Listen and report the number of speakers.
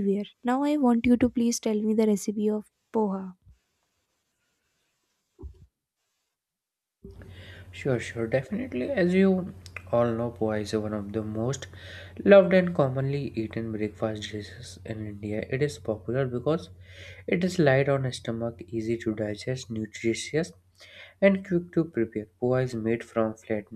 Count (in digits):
2